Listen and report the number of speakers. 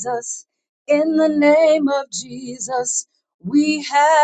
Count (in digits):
1